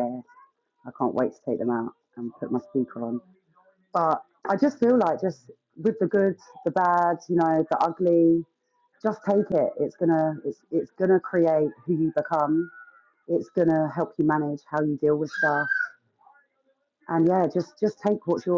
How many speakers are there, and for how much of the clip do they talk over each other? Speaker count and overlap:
1, no overlap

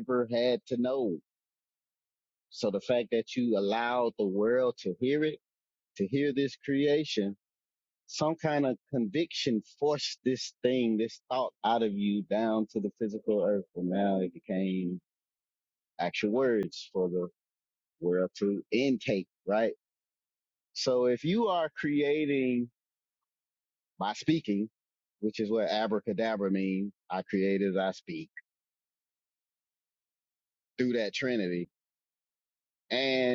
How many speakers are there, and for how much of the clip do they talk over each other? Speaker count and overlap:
1, no overlap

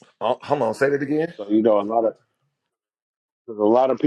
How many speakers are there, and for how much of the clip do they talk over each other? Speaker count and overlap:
2, no overlap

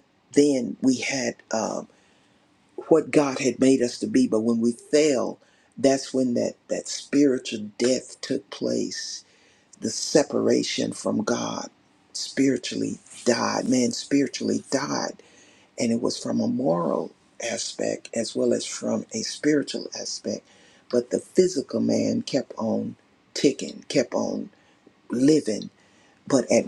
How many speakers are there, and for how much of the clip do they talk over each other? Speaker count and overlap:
1, no overlap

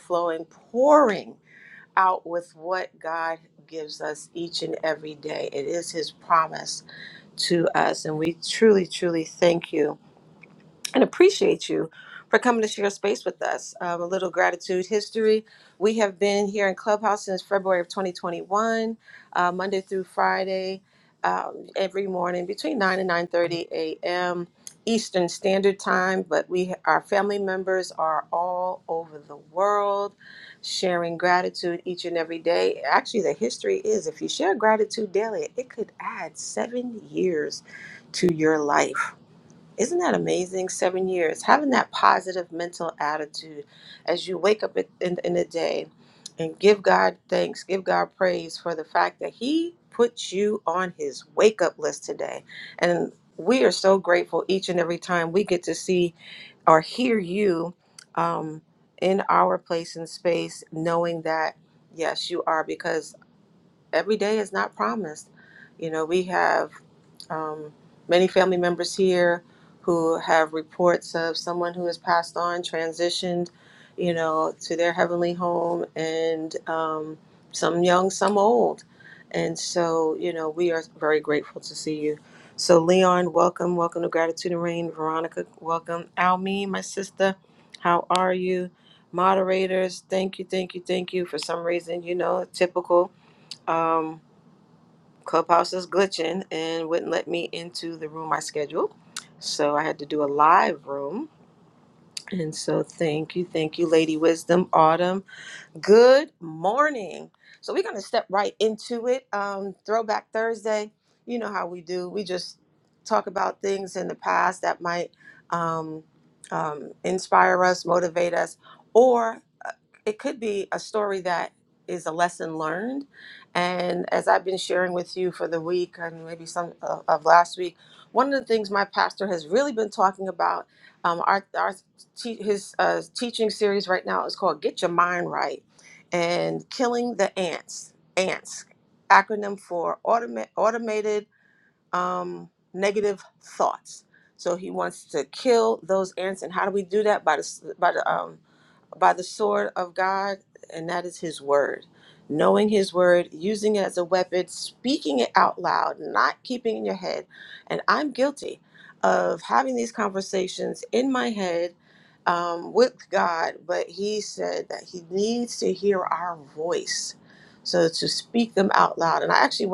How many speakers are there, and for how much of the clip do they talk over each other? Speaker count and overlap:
1, no overlap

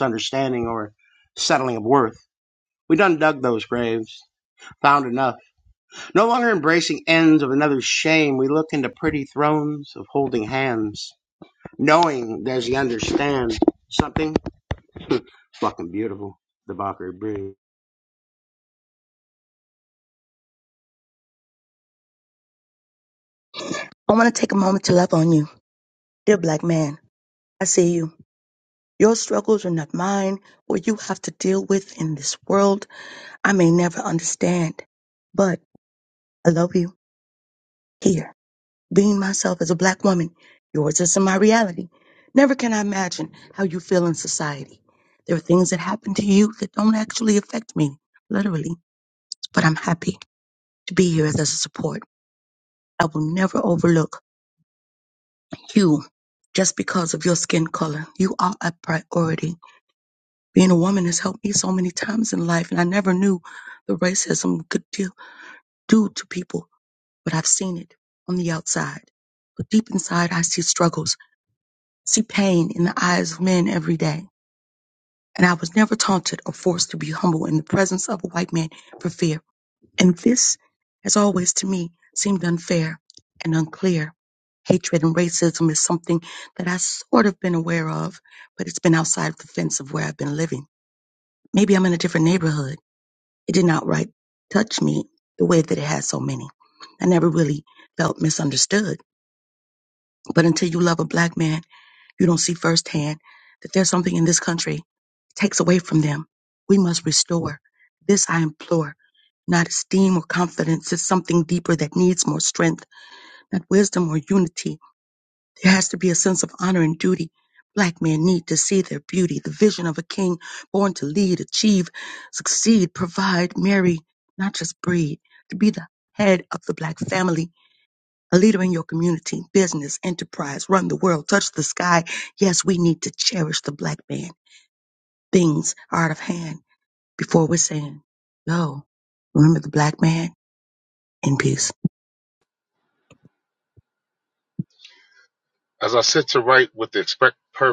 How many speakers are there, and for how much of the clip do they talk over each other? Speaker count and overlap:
3, no overlap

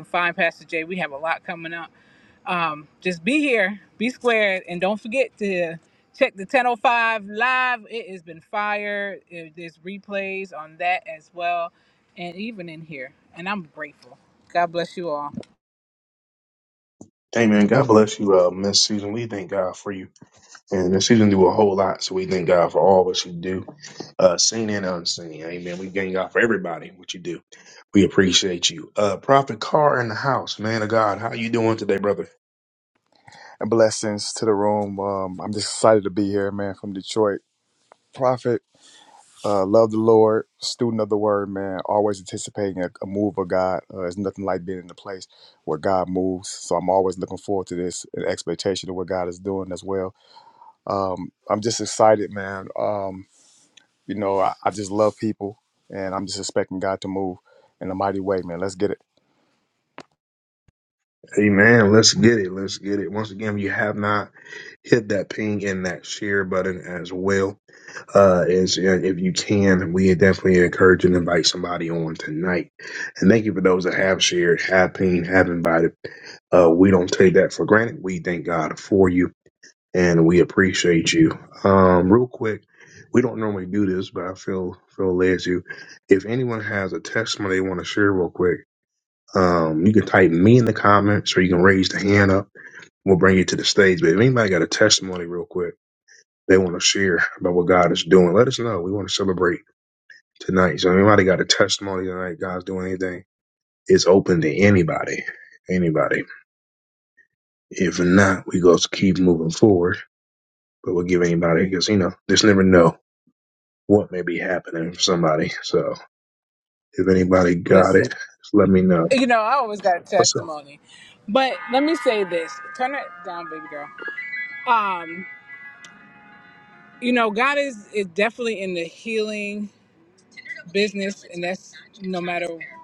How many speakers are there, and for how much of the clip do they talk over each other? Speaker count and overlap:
3, about 1%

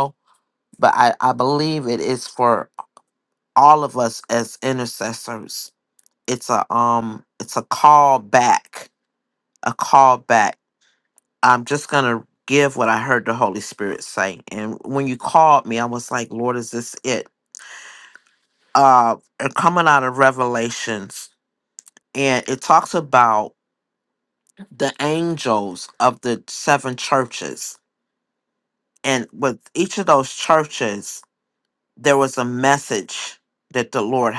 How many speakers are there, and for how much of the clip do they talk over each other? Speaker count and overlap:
1, no overlap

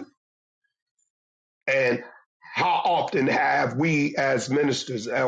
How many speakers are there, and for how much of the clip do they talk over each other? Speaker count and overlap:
1, no overlap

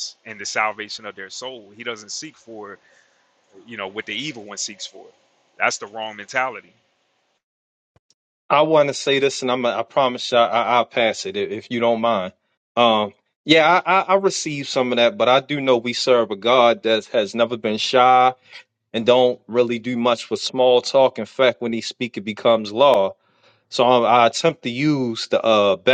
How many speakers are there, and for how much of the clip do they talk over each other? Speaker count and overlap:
2, no overlap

